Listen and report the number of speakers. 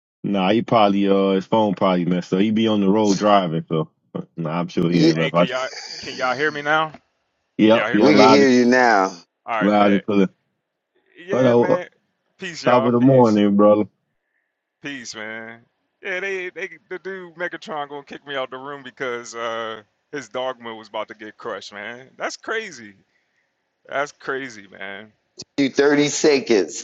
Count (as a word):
three